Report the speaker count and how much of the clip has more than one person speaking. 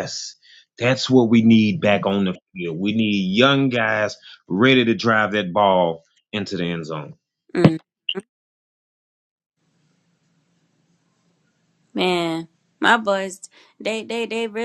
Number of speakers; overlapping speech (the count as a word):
two, no overlap